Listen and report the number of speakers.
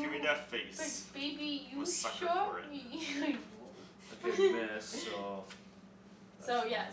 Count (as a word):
three